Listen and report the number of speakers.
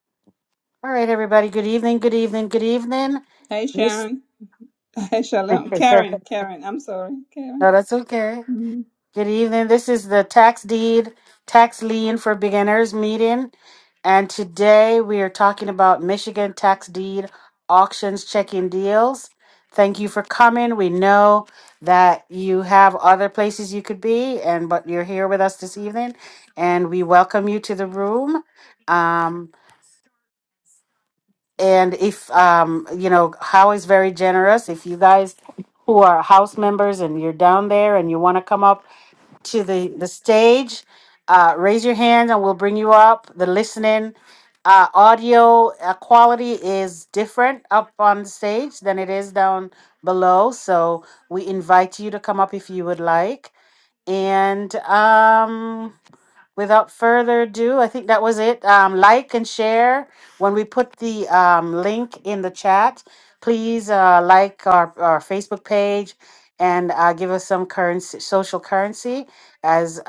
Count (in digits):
2